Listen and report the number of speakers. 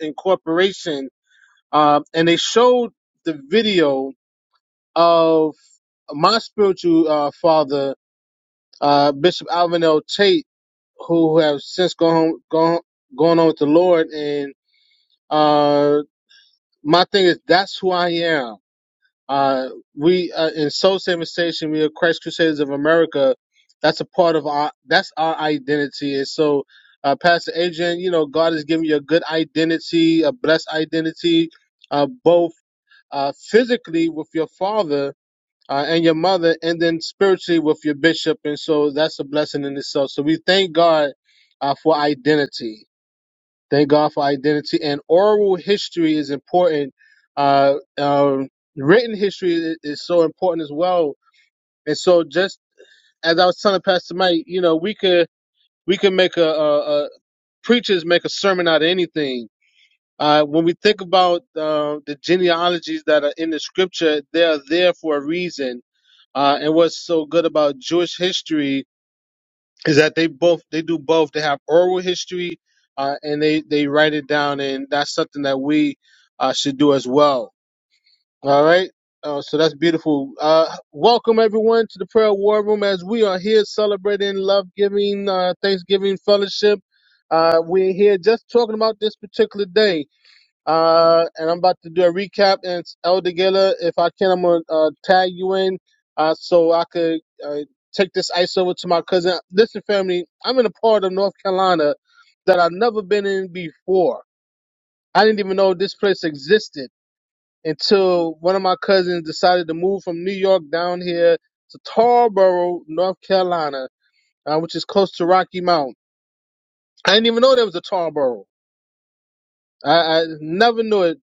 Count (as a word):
one